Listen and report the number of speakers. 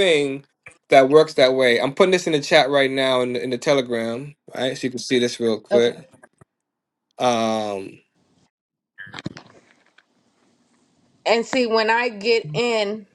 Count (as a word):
two